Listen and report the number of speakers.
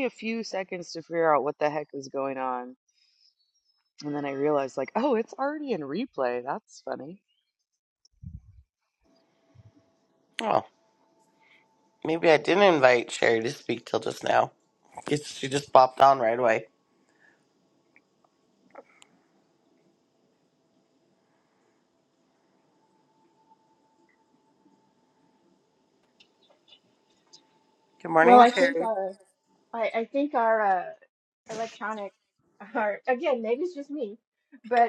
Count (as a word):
three